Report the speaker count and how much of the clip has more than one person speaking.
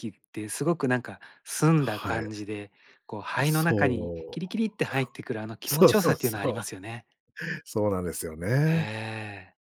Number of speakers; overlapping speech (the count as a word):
two, about 27%